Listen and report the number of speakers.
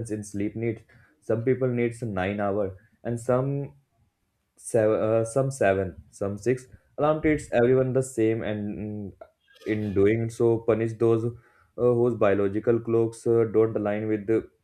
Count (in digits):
1